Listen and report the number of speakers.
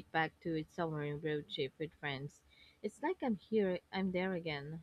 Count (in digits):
1